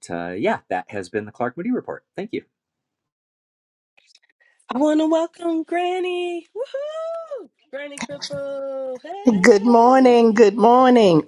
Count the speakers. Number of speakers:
3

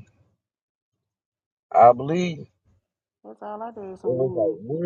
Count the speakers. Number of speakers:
2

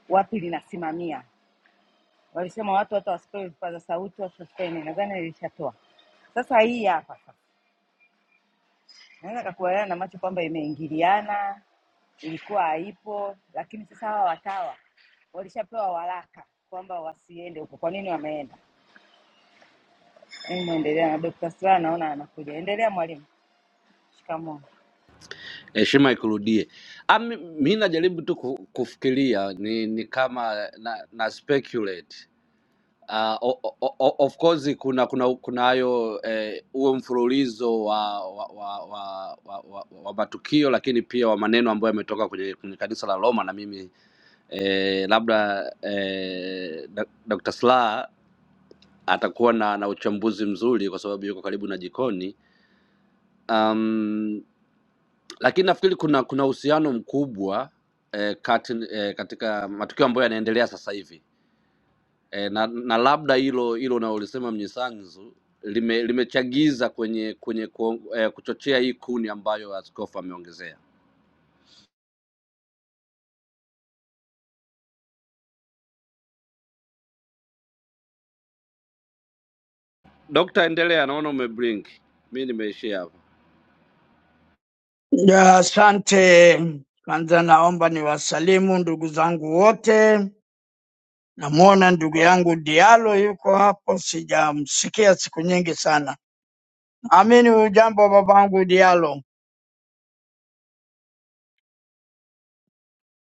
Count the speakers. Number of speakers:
3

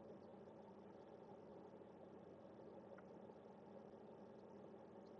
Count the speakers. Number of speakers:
0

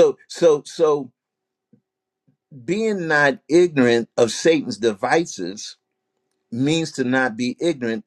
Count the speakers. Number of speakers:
1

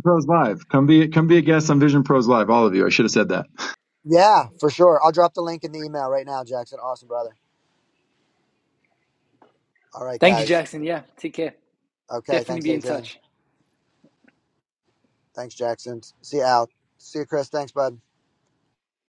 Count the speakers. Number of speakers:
3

